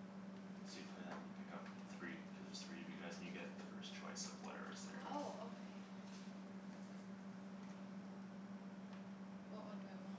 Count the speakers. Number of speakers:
2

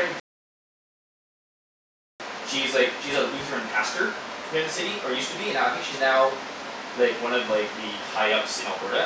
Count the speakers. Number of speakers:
1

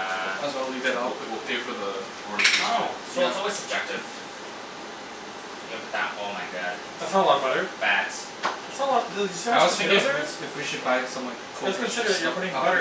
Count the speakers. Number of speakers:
4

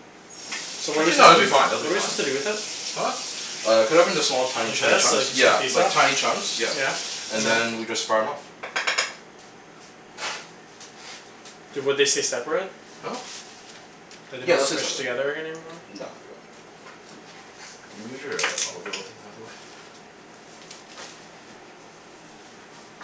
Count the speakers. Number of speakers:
2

